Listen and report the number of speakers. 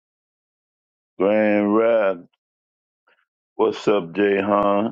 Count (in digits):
1